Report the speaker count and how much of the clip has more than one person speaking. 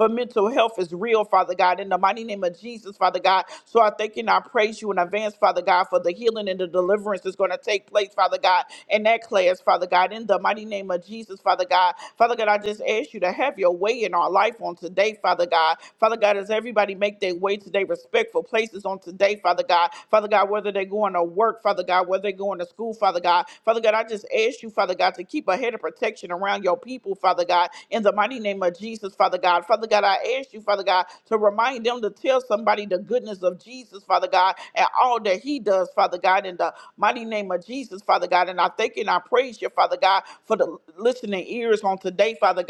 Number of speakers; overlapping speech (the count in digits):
1, no overlap